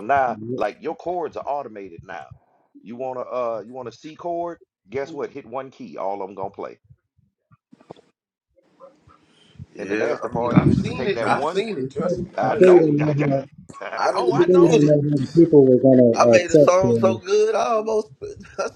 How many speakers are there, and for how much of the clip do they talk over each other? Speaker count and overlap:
3, about 28%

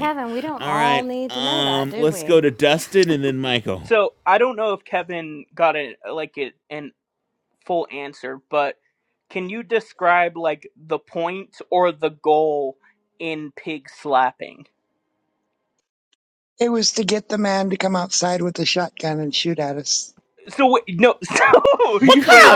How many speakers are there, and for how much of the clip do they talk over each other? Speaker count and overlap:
4, about 11%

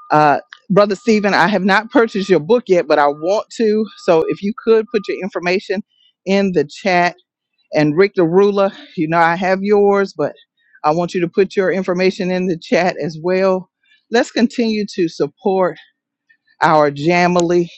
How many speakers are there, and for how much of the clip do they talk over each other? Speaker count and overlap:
1, no overlap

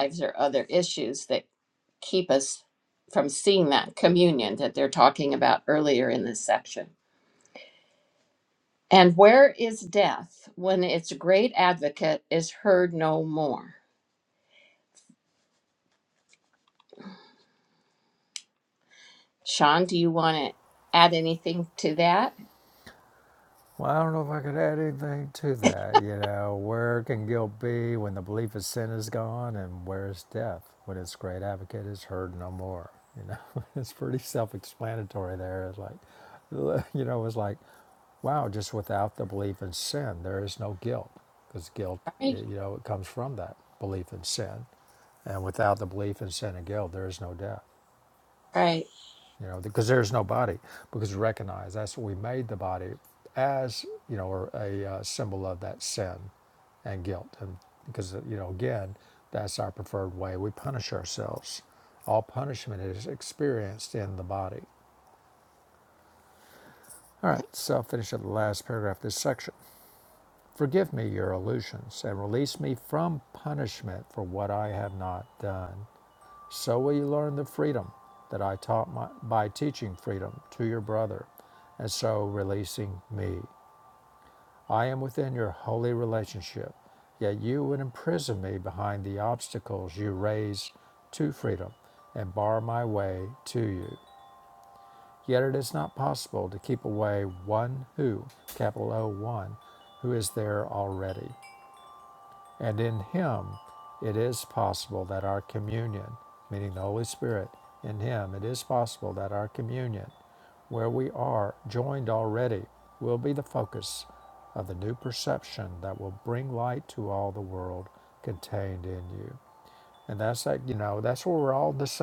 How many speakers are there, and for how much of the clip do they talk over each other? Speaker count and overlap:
2, under 1%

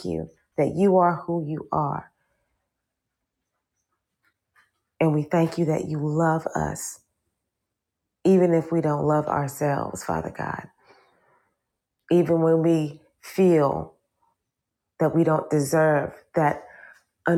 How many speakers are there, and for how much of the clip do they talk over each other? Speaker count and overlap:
1, no overlap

